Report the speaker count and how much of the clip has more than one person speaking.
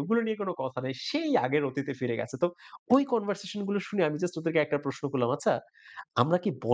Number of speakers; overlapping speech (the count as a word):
one, no overlap